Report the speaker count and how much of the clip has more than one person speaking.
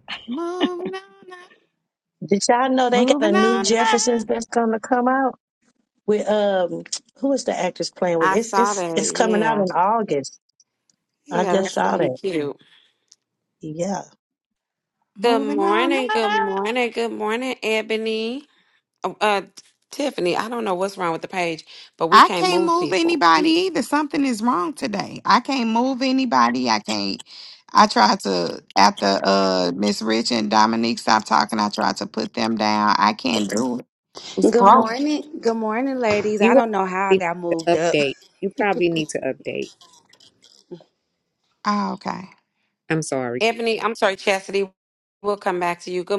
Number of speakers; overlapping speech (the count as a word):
five, about 16%